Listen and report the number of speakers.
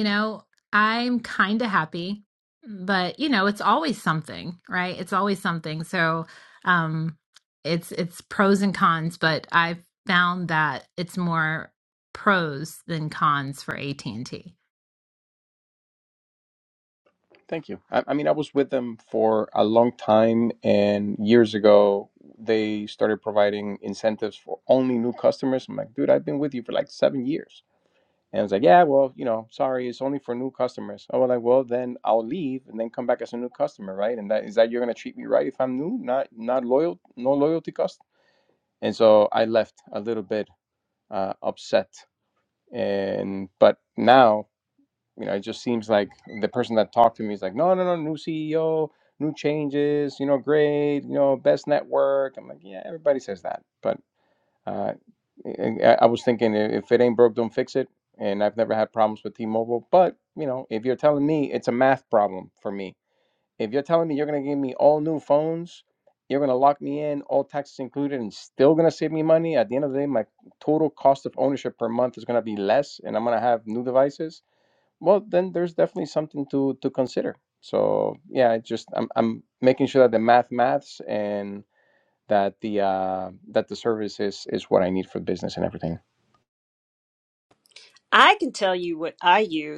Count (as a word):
three